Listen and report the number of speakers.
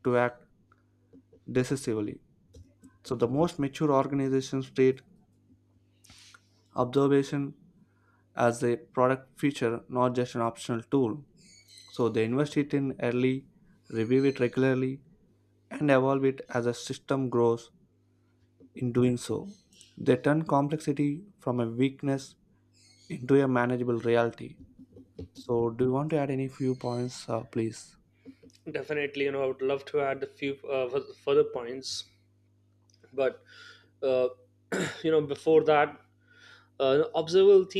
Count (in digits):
2